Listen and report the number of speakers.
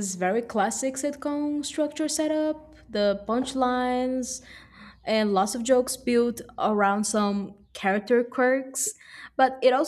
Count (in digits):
1